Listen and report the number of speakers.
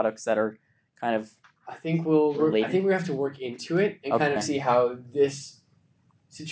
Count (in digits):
2